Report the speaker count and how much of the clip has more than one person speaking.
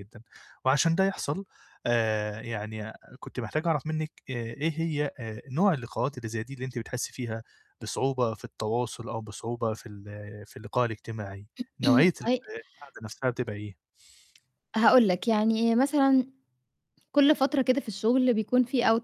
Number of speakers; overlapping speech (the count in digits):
2, no overlap